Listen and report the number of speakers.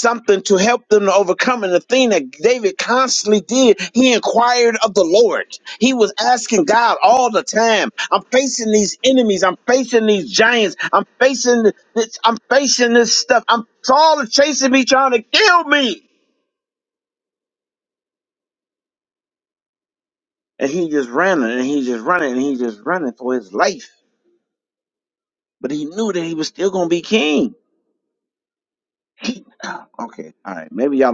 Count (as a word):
one